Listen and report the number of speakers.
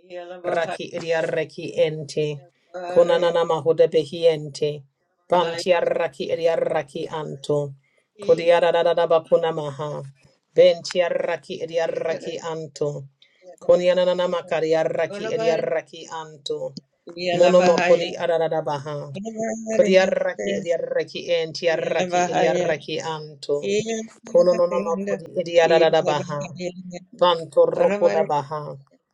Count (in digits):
2